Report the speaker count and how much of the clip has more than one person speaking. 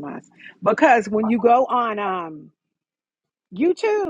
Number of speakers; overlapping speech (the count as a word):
one, no overlap